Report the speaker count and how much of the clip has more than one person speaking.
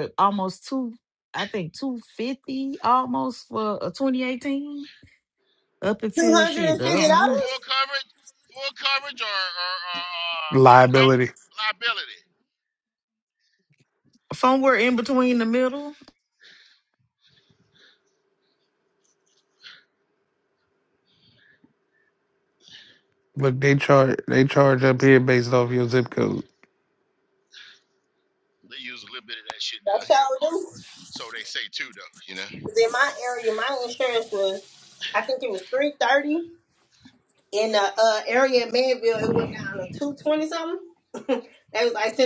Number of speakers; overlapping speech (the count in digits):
4, about 6%